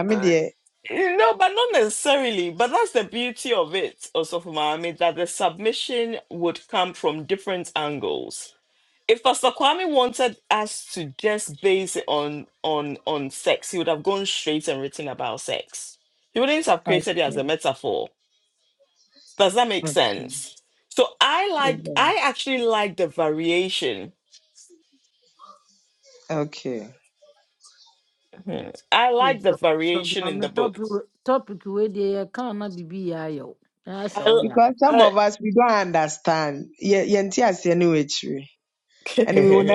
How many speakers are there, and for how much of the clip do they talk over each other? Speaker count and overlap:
three, about 9%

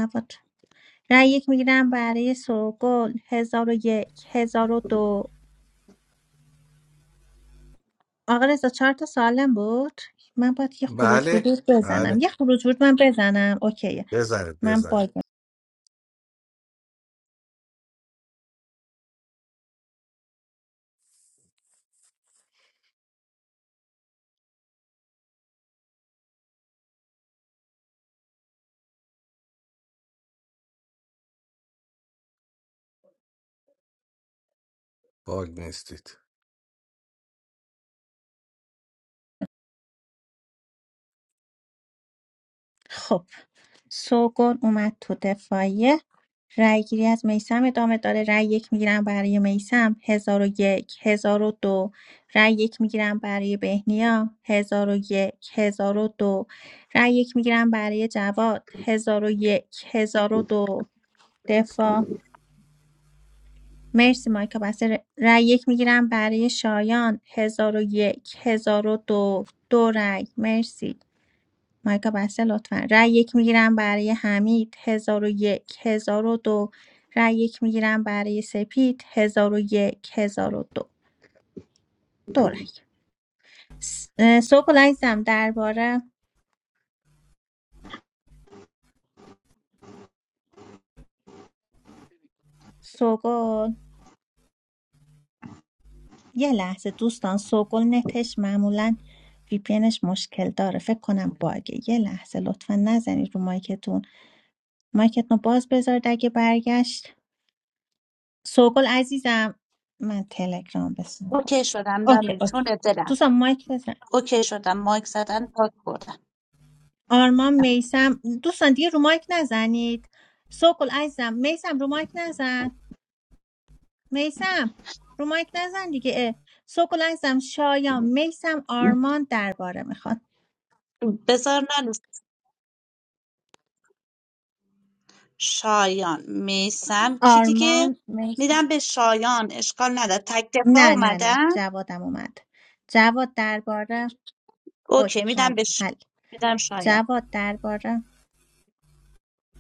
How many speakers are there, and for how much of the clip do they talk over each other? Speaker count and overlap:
three, about 3%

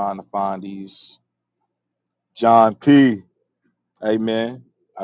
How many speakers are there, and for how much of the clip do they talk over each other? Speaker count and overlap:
one, no overlap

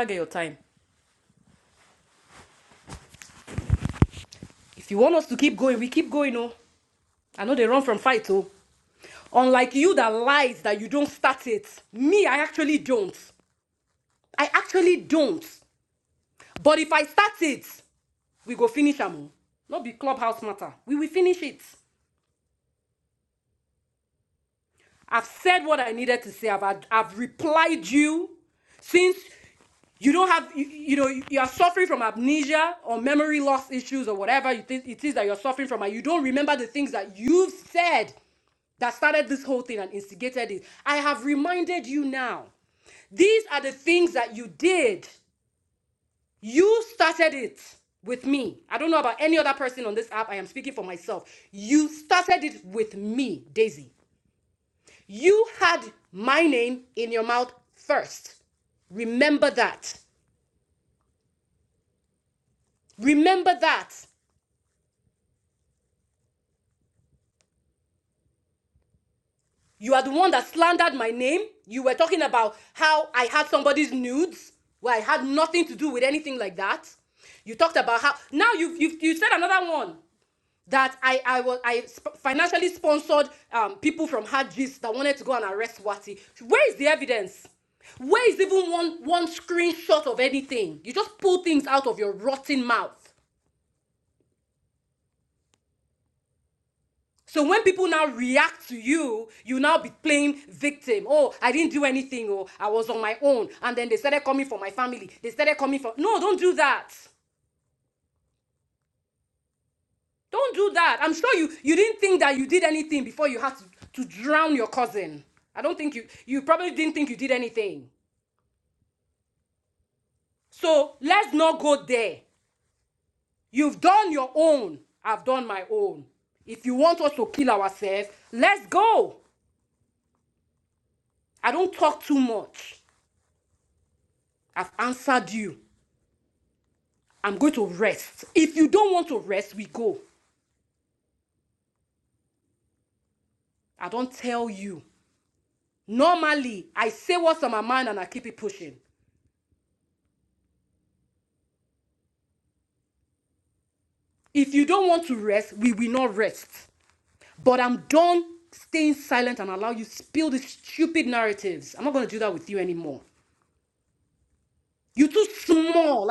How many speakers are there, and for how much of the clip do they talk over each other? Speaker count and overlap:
one, no overlap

